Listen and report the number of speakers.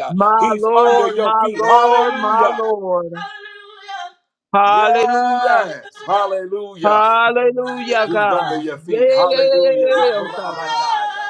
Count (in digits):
3